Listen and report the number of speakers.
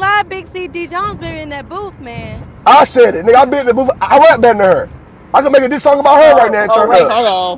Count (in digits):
3